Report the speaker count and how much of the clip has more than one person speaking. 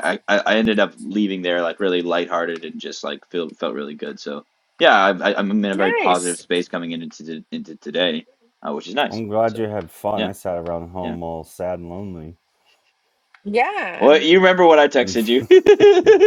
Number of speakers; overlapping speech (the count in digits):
3, about 7%